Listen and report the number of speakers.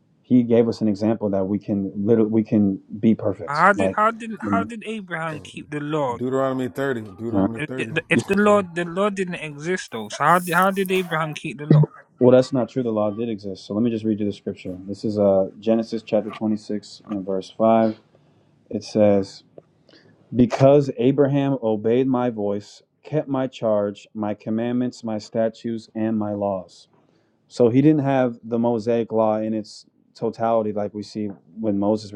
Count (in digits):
3